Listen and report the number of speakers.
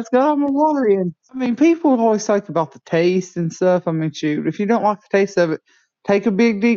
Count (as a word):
one